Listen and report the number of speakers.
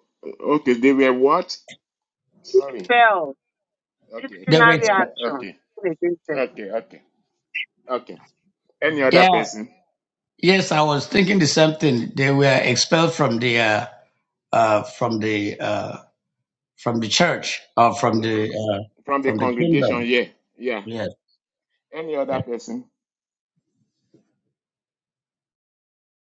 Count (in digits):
3